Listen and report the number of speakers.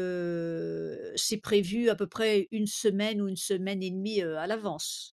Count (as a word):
one